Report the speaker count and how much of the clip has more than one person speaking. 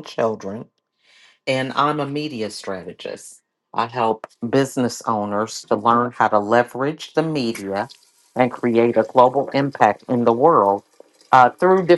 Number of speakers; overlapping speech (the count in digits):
1, no overlap